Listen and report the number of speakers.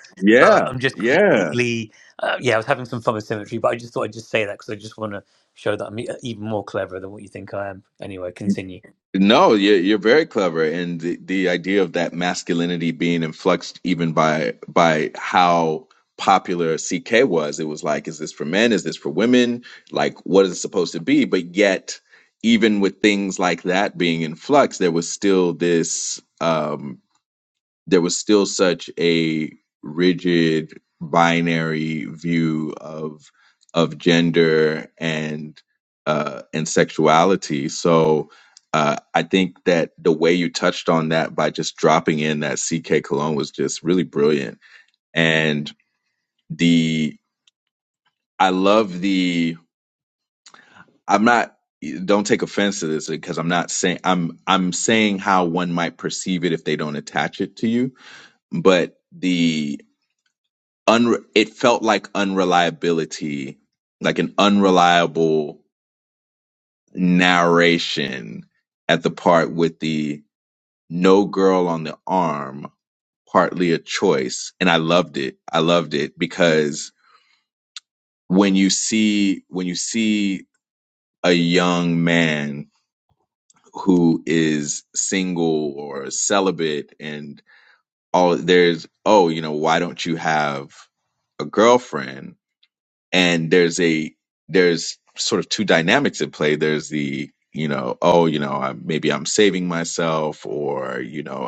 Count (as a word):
two